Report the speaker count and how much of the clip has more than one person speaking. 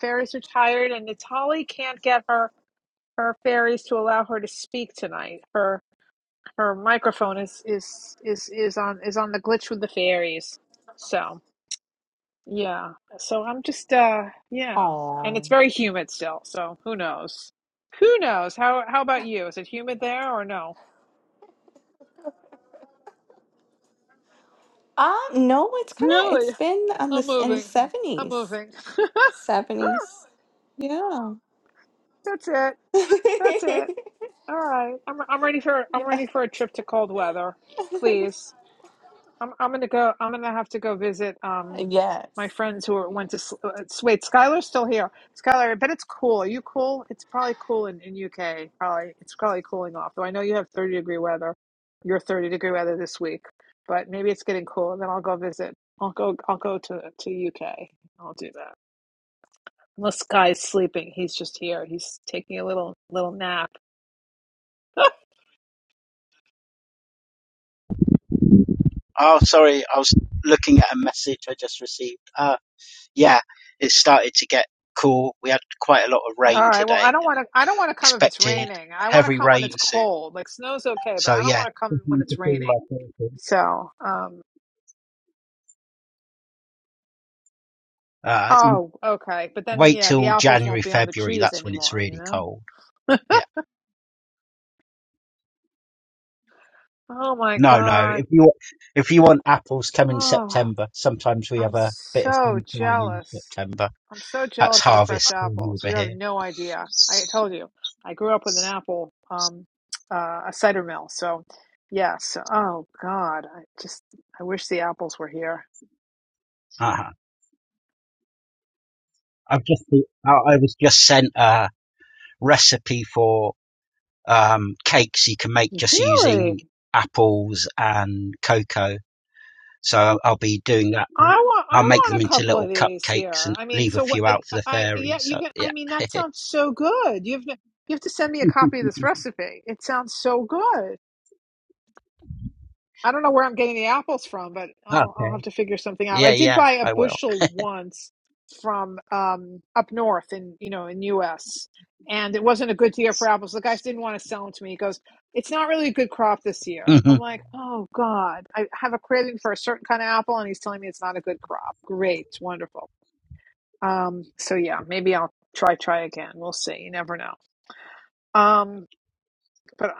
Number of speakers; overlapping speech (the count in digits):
3, about 11%